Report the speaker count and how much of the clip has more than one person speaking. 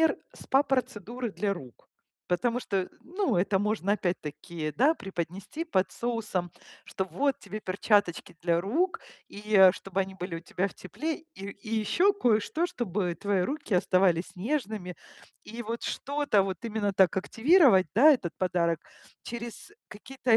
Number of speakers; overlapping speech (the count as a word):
one, no overlap